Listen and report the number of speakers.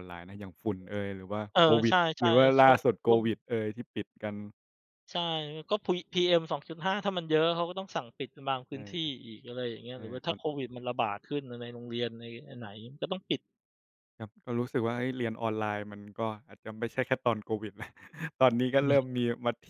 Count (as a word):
two